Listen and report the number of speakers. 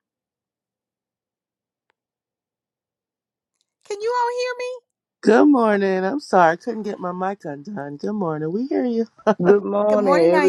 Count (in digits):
3